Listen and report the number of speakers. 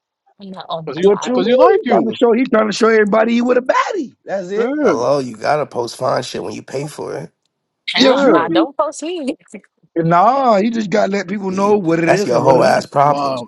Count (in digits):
4